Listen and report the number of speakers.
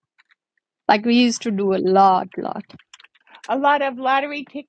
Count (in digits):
2